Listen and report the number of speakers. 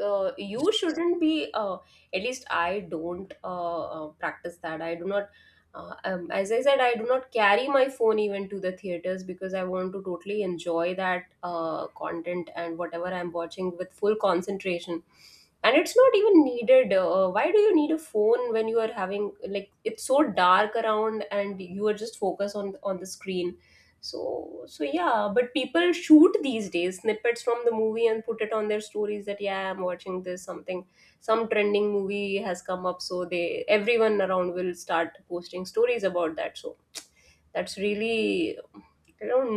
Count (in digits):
1